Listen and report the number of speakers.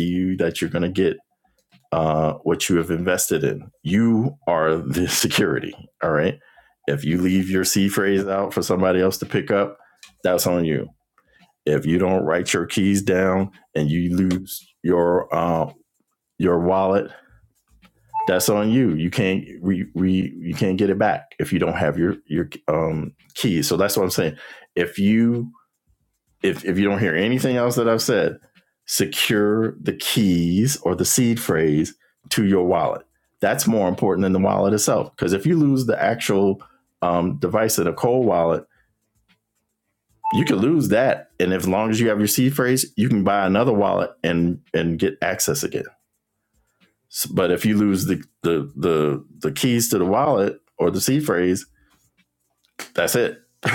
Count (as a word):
one